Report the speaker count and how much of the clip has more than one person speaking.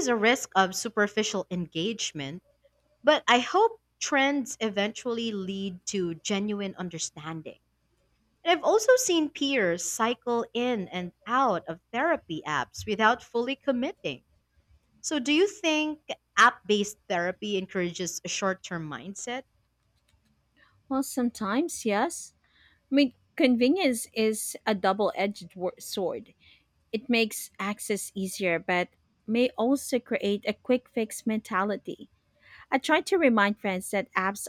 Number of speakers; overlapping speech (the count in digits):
2, no overlap